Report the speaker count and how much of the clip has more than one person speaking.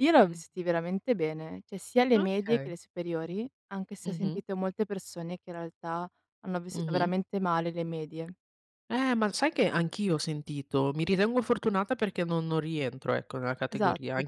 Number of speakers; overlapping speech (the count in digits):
2, about 13%